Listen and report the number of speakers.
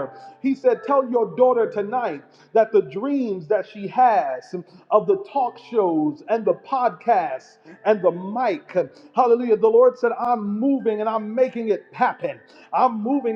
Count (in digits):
1